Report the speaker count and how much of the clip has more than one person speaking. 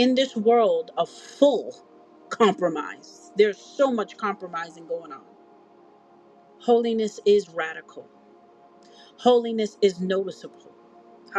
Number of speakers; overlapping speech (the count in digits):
1, no overlap